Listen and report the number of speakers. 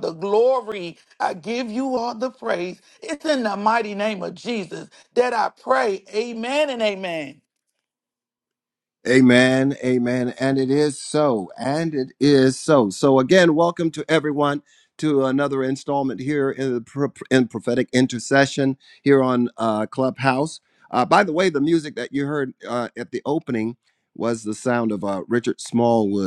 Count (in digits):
2